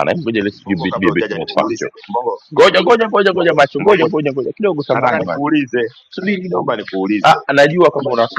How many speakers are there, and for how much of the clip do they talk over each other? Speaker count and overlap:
two, about 30%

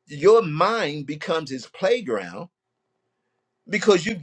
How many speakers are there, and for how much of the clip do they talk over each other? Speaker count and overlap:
one, no overlap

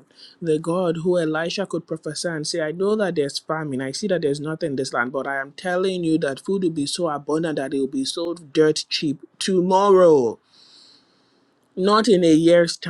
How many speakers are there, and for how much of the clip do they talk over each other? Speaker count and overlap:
one, no overlap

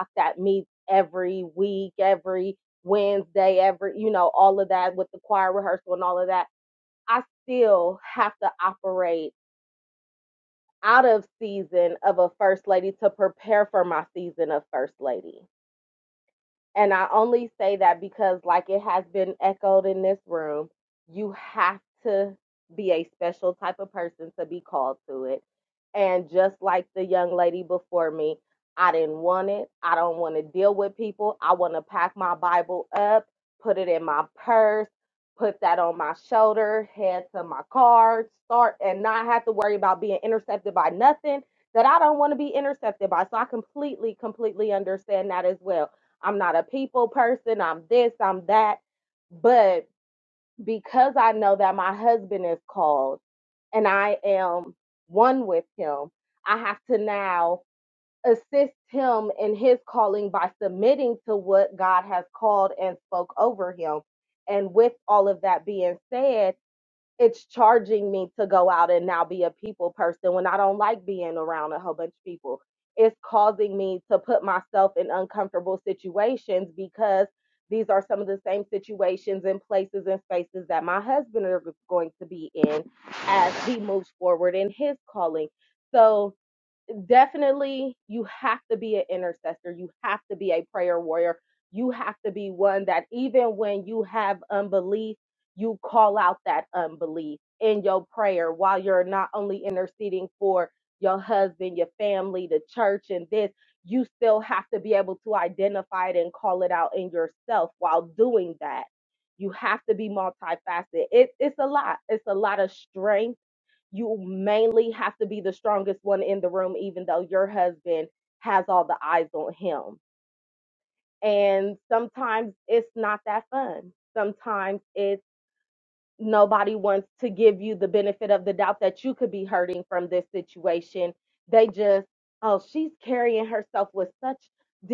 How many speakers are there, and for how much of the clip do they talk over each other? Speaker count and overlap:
one, no overlap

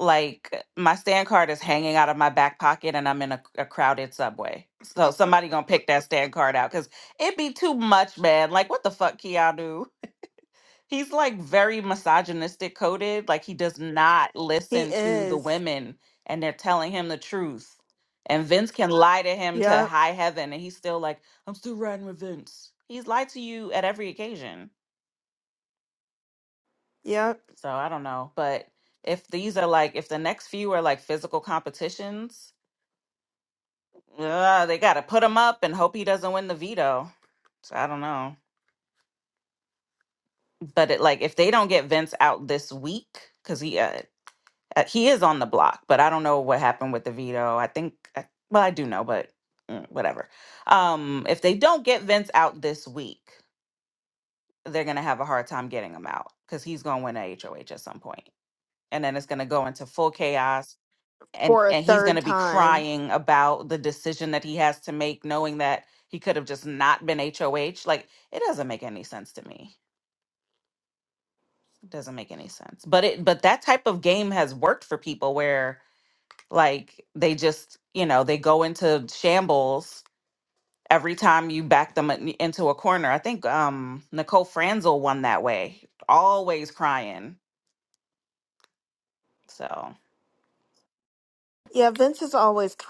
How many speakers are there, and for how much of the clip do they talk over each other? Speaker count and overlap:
two, about 3%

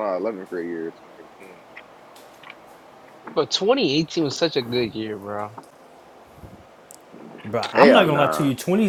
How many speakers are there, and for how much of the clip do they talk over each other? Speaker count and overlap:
three, about 10%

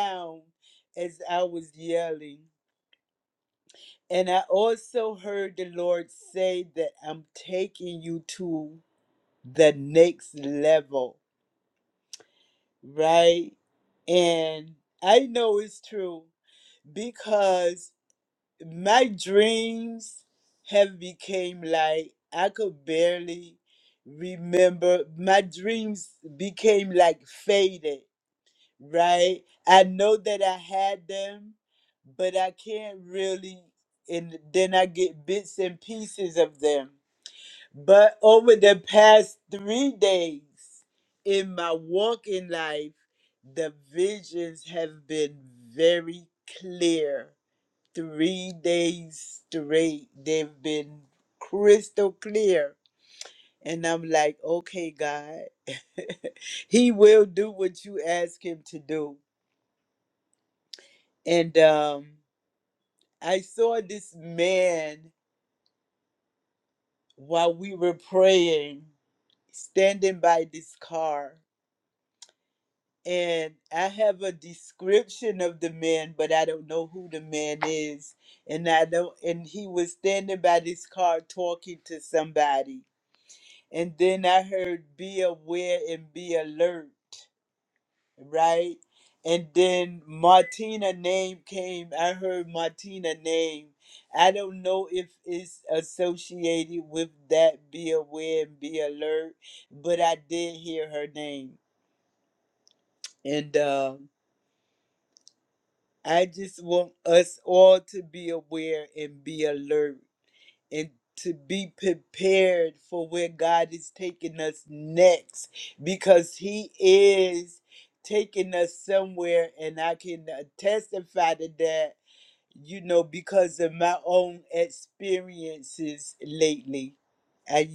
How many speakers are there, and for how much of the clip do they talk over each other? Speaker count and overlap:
one, no overlap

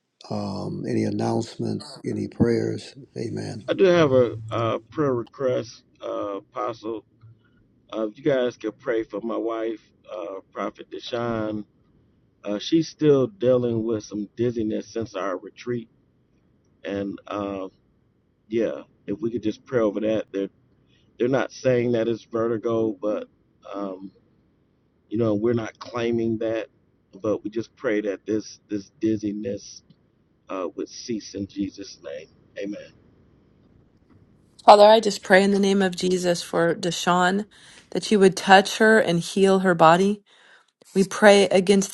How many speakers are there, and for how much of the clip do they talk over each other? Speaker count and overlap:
three, no overlap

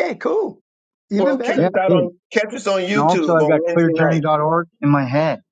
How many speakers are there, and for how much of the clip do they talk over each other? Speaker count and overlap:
three, about 39%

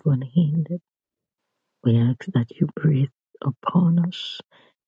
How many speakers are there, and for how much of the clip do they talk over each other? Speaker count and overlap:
one, no overlap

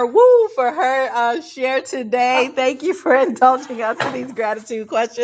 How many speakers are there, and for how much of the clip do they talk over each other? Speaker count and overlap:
one, no overlap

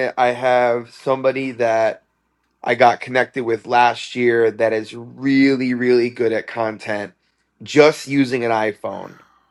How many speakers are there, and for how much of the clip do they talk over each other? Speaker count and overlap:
one, no overlap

